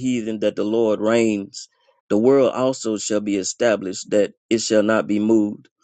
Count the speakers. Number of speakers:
one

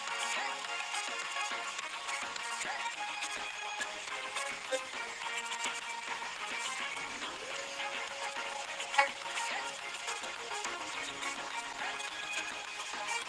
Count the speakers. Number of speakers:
zero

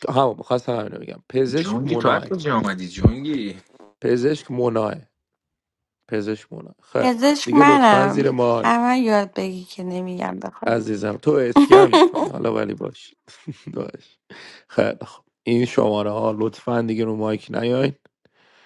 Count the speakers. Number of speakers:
three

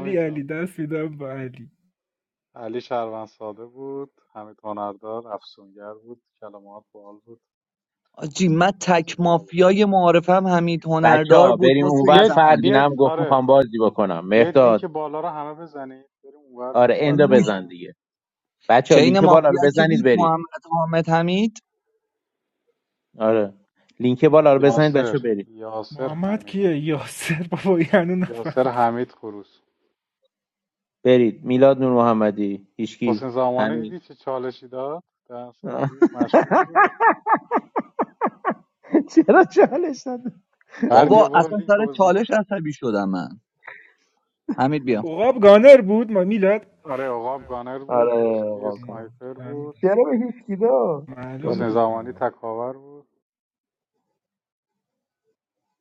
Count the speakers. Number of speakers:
four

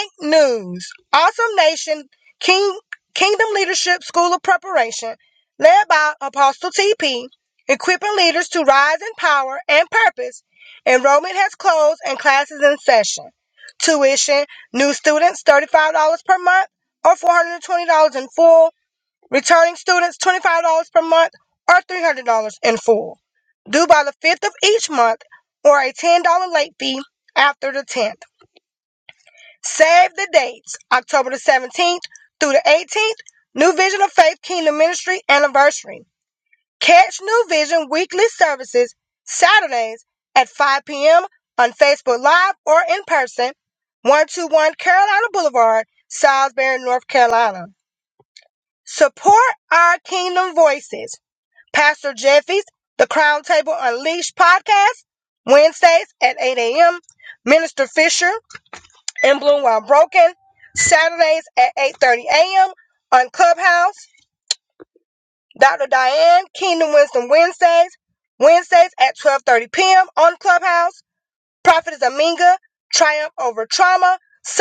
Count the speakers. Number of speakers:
one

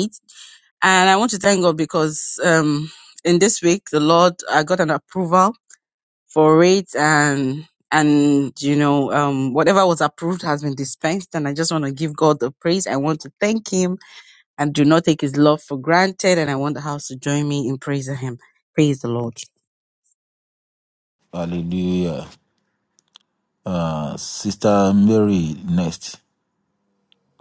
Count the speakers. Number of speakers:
two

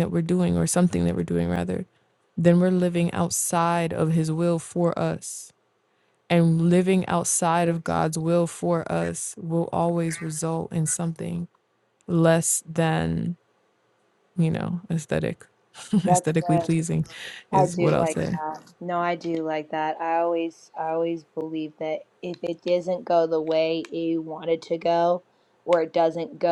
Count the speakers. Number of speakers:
two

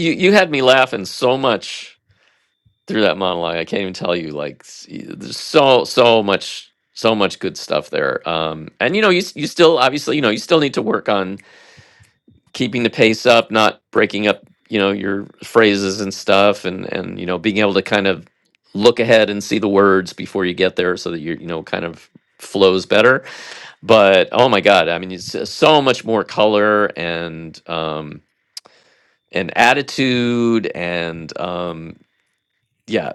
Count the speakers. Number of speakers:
one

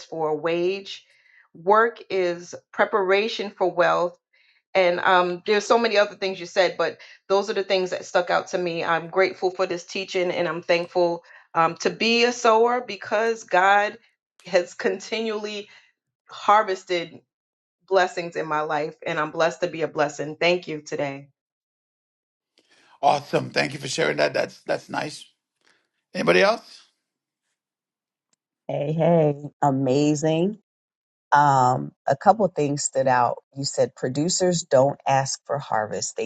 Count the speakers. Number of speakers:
three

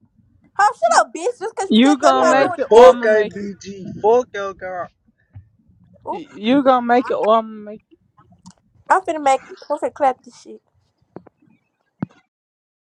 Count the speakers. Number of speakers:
three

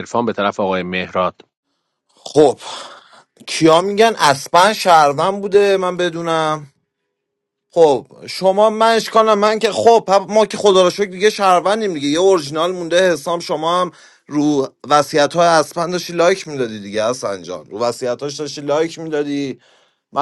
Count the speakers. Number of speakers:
two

